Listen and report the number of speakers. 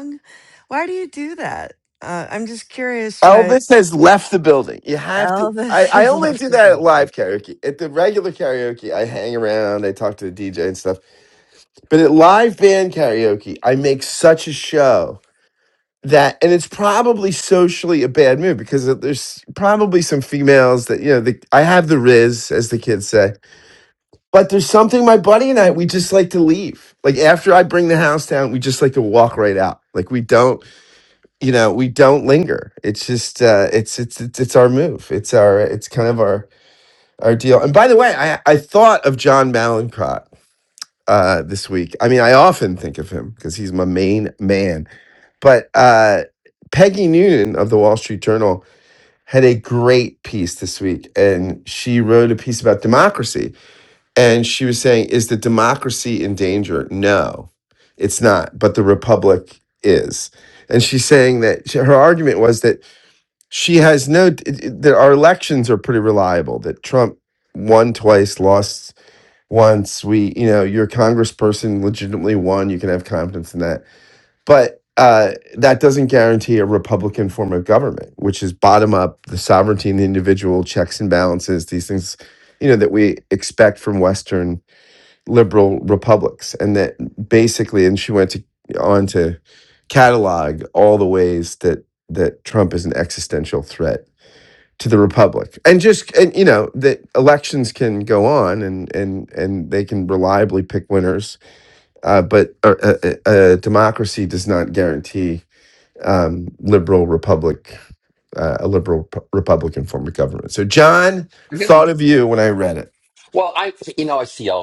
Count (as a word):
three